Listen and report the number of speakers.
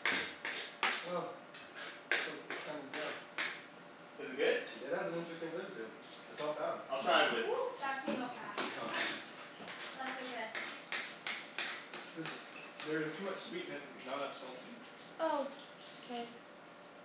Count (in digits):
4